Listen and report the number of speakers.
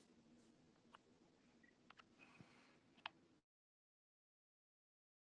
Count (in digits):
0